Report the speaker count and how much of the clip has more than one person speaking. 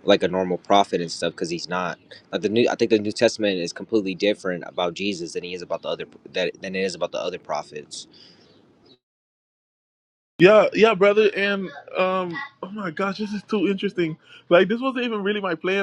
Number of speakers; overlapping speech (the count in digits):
2, no overlap